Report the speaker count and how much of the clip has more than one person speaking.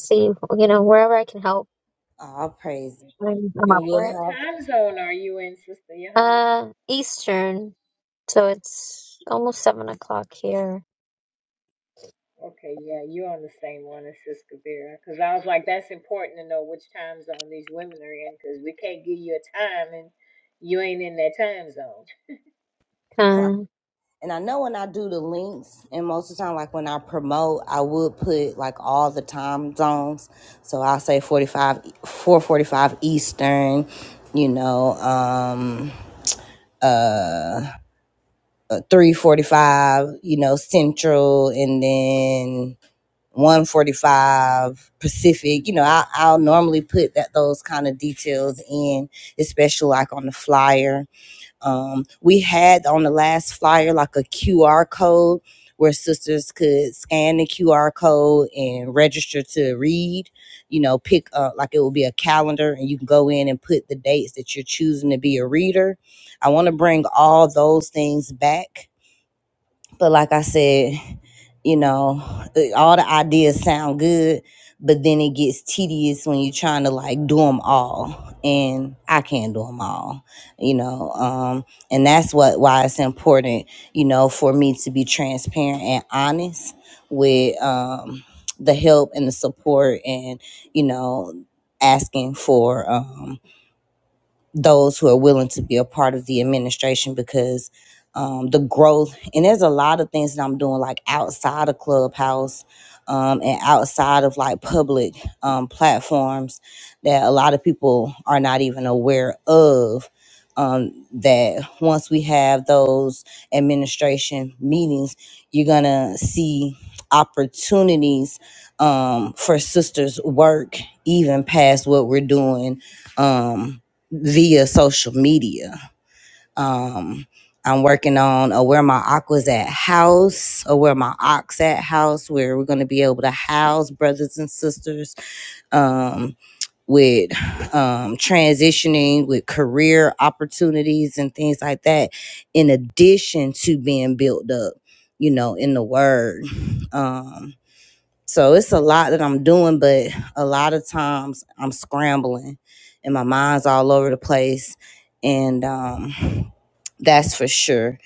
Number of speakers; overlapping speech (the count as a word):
three, about 1%